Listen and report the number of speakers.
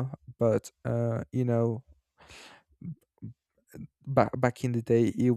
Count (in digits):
1